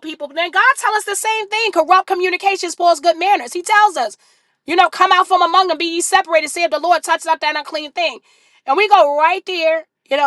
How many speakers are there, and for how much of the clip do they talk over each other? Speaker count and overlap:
1, no overlap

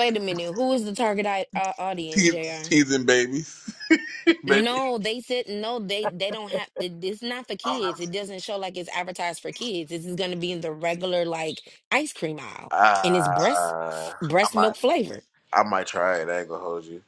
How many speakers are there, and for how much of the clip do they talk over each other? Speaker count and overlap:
2, about 11%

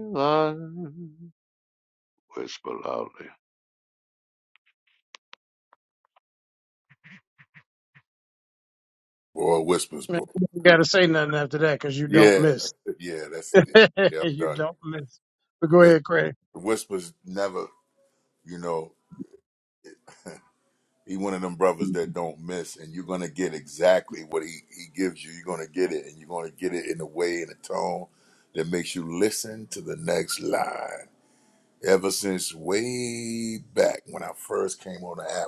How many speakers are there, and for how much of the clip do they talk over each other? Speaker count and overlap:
3, about 3%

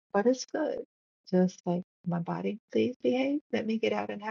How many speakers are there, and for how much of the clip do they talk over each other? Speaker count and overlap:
1, no overlap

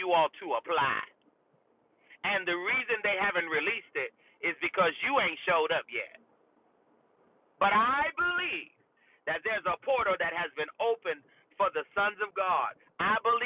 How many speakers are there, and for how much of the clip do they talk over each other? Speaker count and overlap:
1, no overlap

